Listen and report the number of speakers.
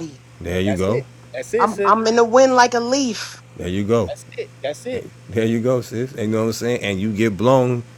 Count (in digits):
3